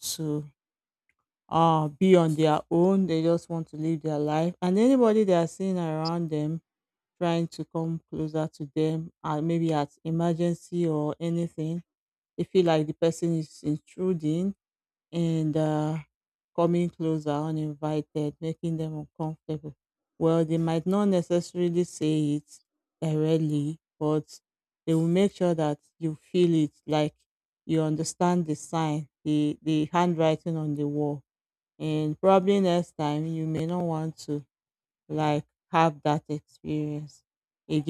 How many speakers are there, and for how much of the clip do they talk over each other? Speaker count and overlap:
one, no overlap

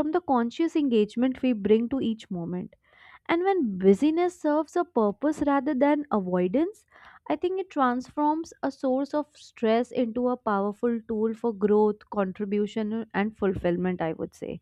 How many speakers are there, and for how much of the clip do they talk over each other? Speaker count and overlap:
one, no overlap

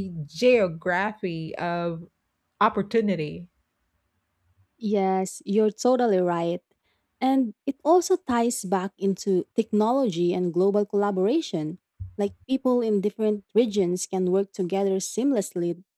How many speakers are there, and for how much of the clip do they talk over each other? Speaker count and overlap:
two, no overlap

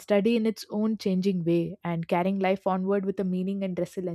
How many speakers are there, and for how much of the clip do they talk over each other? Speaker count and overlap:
one, no overlap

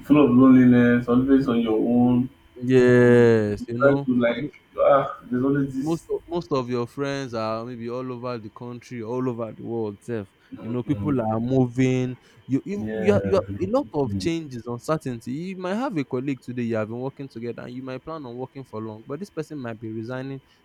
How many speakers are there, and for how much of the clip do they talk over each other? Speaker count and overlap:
two, about 8%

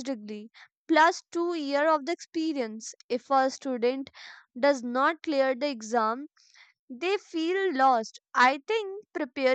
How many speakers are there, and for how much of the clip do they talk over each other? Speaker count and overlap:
one, no overlap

